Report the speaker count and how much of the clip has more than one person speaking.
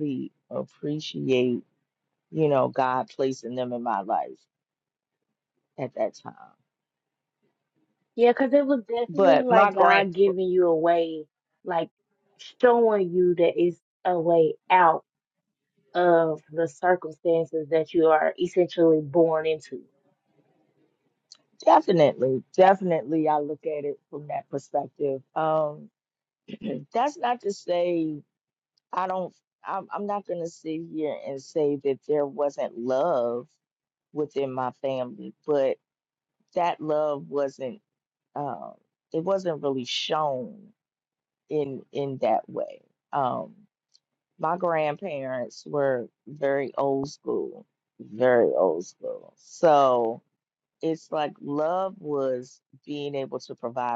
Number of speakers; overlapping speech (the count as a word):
two, about 2%